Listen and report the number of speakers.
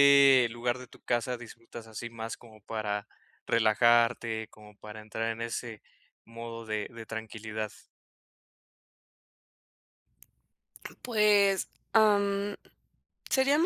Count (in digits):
2